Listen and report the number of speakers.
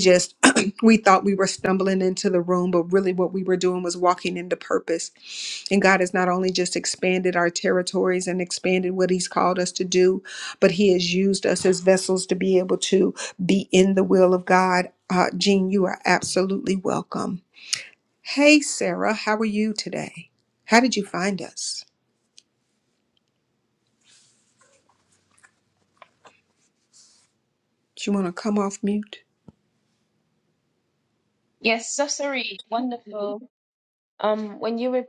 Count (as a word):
two